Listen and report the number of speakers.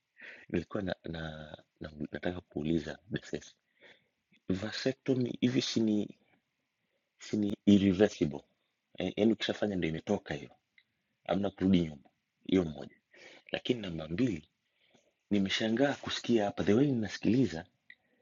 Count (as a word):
one